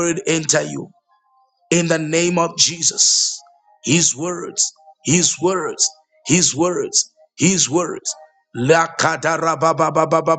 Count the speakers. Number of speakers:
1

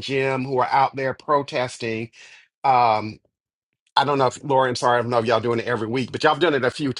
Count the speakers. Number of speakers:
1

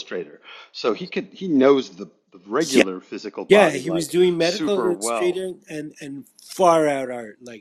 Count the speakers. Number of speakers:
2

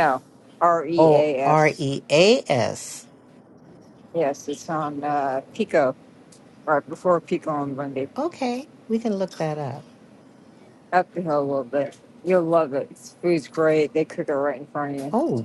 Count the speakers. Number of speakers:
2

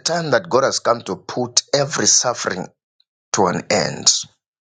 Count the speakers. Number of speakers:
1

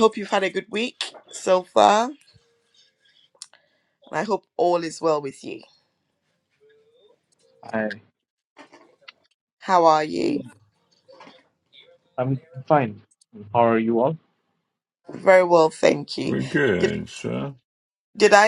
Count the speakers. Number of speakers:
3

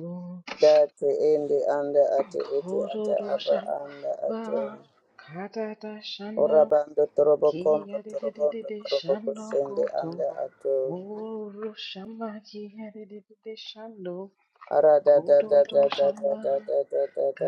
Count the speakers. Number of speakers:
2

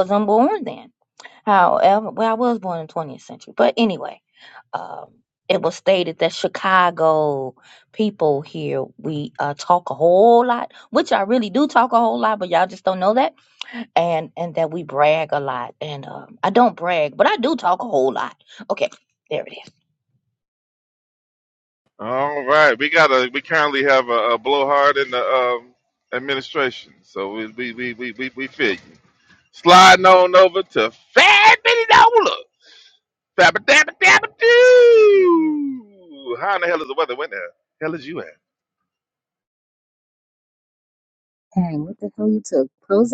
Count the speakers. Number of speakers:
3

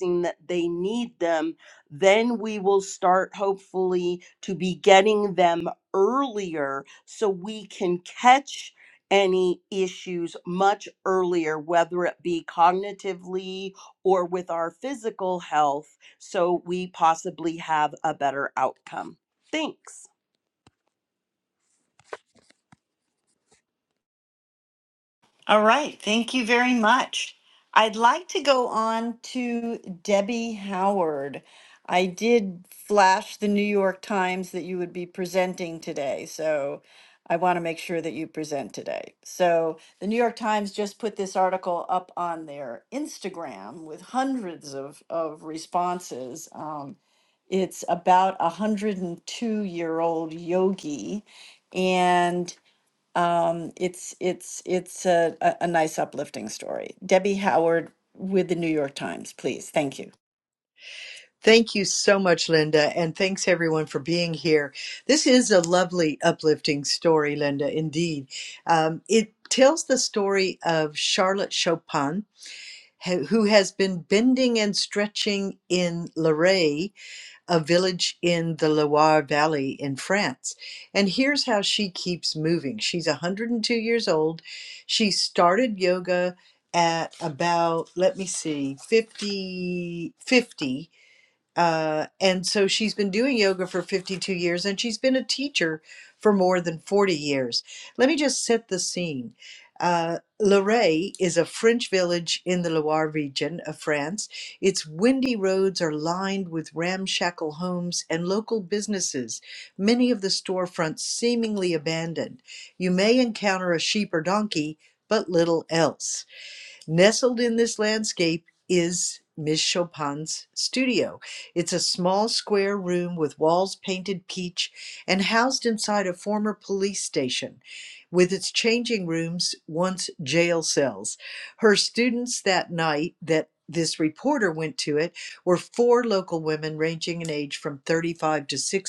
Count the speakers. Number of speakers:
3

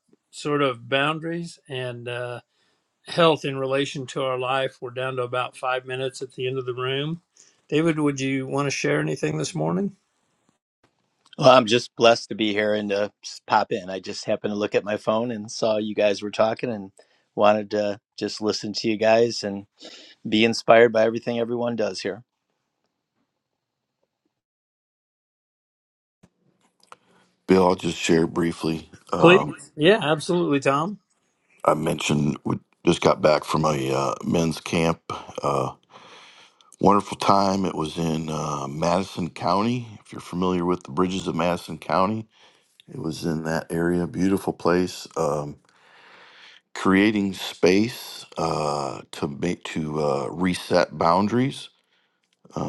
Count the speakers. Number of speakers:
3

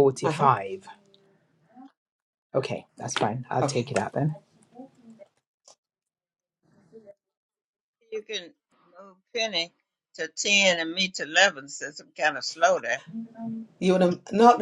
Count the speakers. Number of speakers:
3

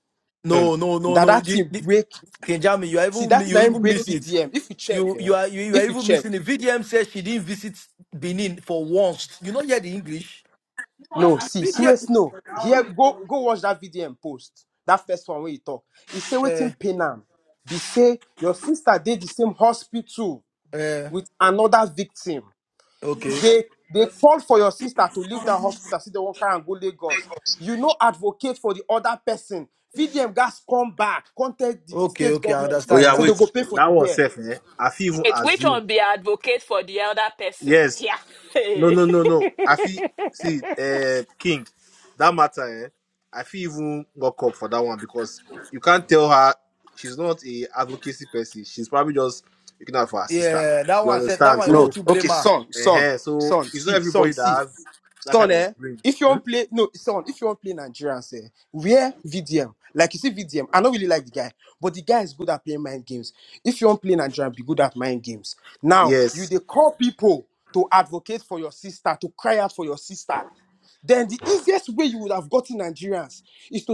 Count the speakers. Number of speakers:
4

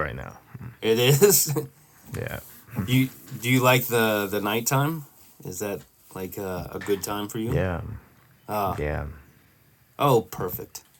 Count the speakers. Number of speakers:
2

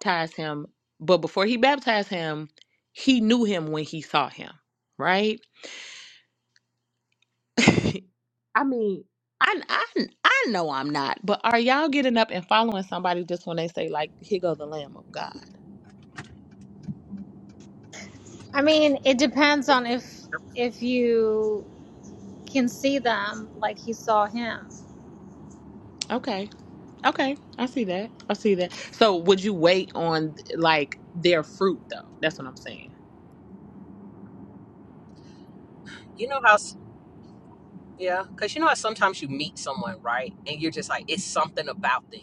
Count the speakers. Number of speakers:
3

